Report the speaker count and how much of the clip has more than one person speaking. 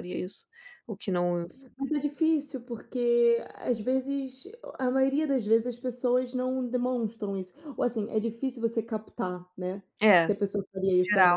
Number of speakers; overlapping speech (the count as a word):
two, about 3%